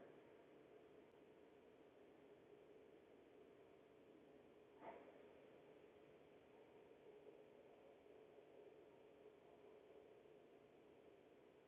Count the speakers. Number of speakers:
0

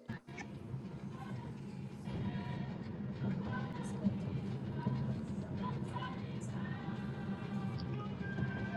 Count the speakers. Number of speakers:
0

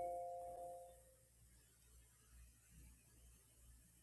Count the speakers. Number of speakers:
0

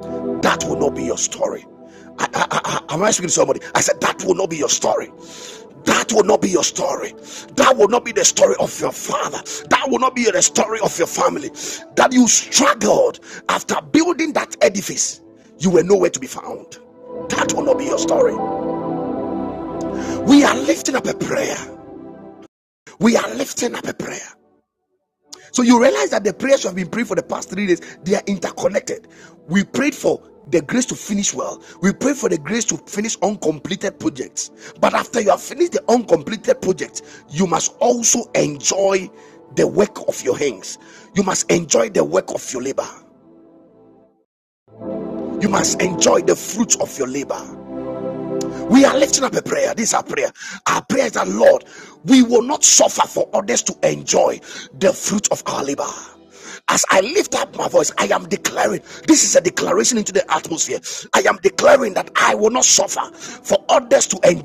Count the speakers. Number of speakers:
1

